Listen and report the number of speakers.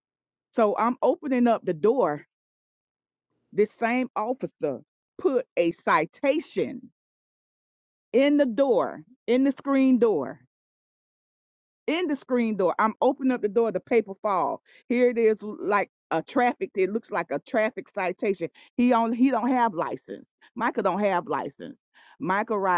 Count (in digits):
1